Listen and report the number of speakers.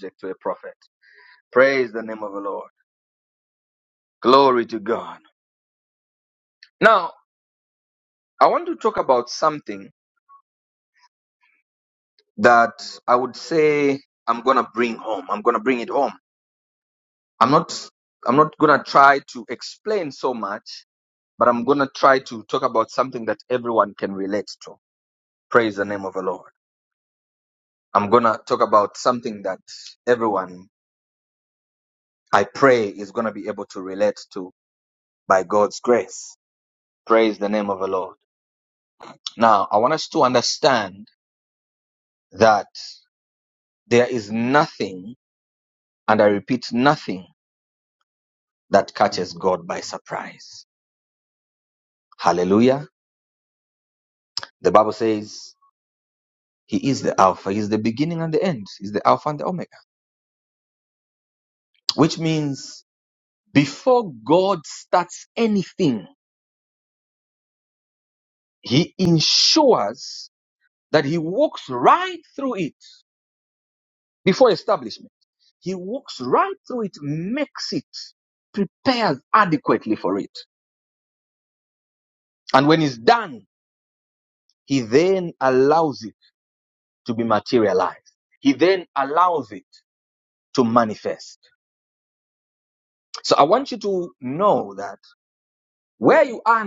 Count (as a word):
one